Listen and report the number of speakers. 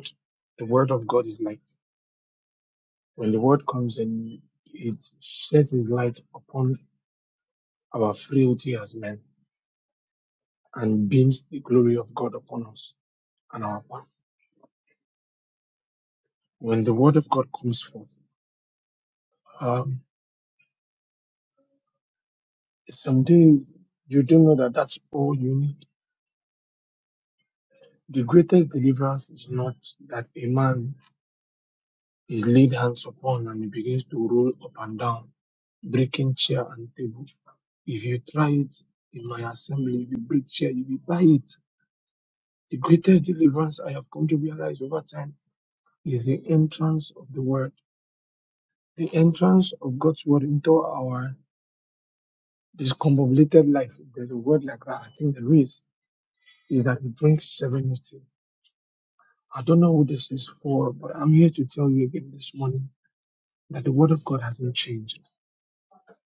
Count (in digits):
1